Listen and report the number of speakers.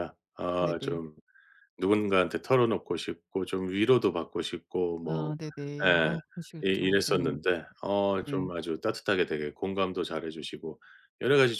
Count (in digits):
2